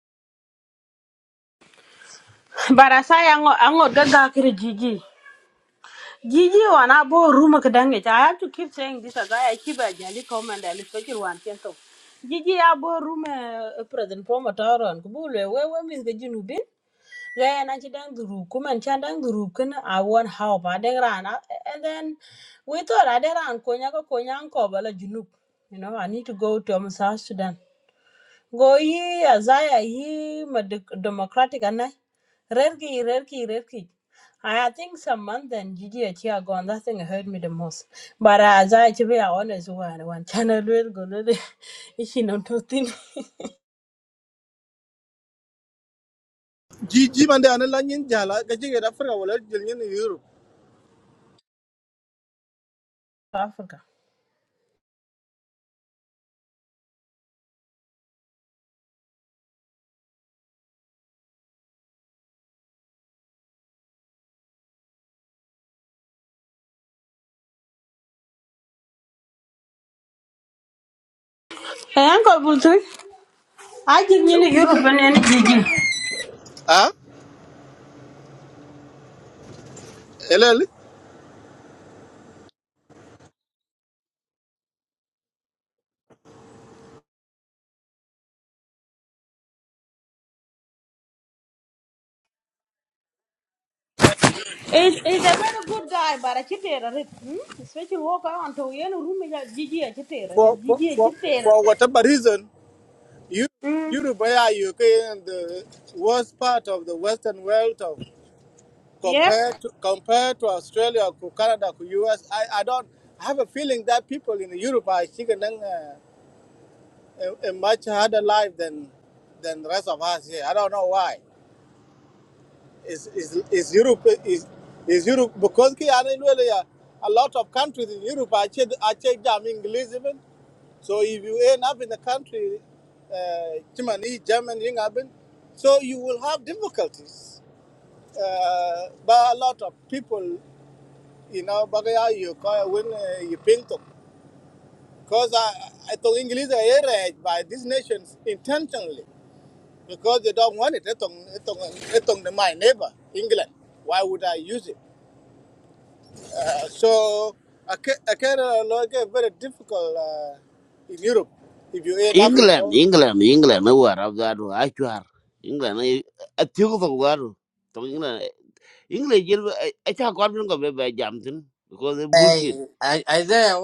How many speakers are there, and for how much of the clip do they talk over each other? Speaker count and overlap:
four, about 1%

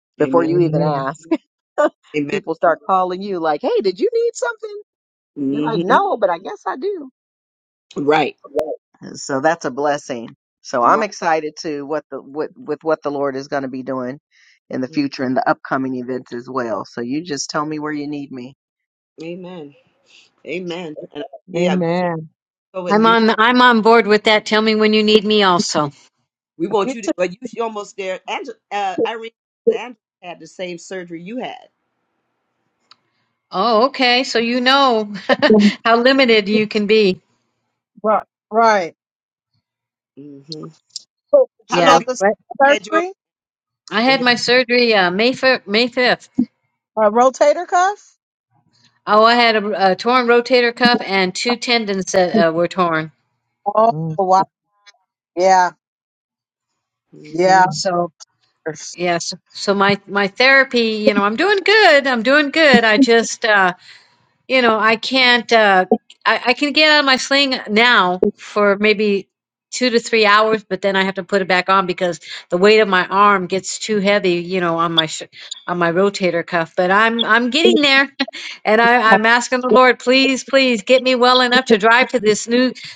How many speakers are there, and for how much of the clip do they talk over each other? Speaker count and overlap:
five, about 5%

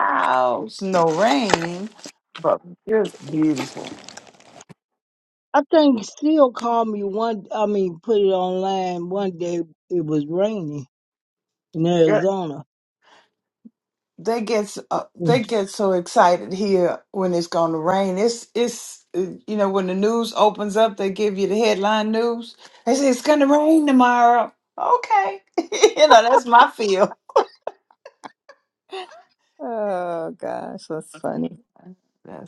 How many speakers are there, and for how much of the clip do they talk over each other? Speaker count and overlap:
three, about 1%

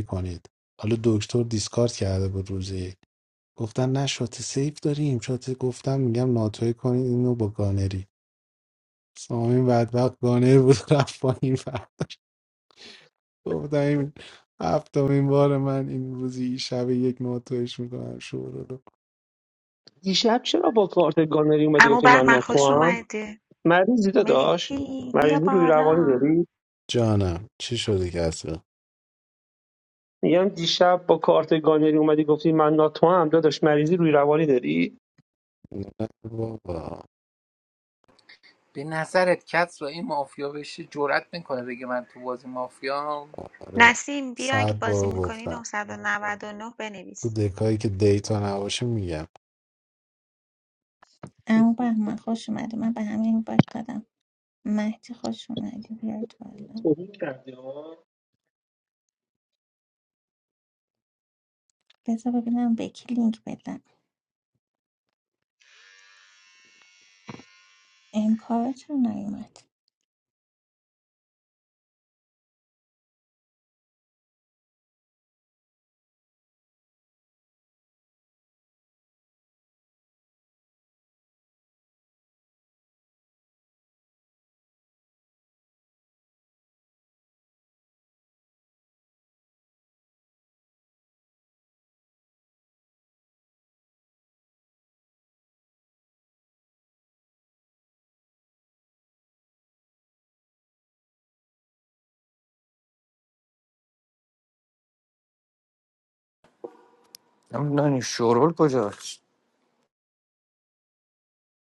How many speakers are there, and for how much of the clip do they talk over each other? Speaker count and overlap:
six, about 4%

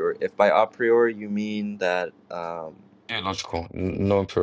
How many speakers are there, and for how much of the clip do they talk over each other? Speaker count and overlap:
two, no overlap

